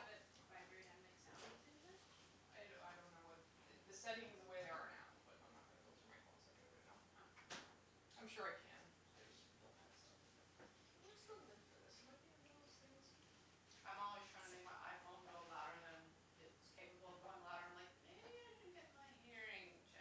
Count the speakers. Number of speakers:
3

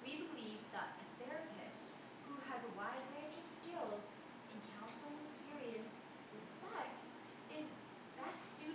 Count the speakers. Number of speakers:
1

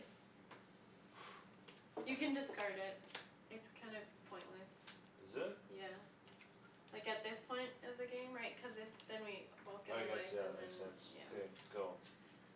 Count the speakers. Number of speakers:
2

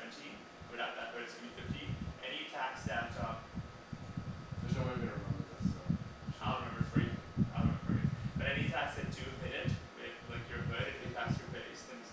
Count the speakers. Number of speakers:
2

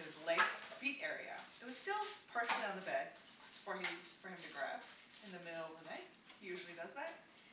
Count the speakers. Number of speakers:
1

